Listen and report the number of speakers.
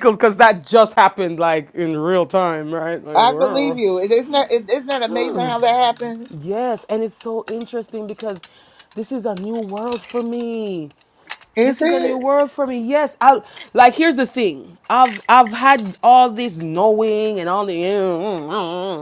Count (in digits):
2